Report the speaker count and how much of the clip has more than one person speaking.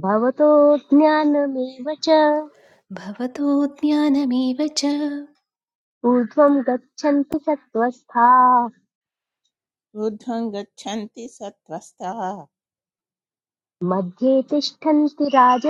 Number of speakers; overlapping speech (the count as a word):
three, no overlap